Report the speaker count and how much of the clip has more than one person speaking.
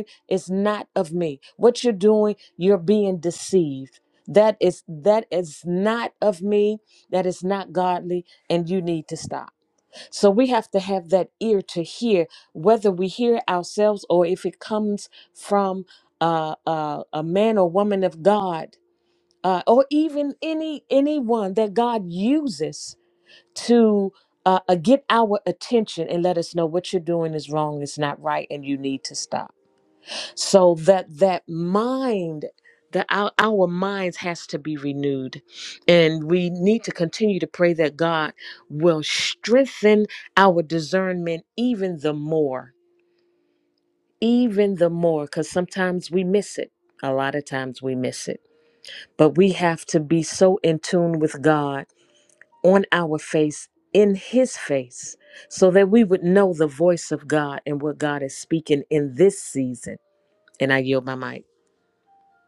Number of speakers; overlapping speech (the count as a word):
one, no overlap